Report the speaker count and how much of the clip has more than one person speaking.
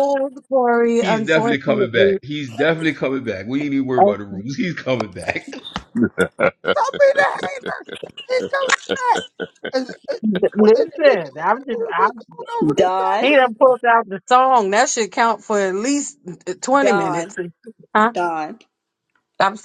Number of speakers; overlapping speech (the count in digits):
4, about 14%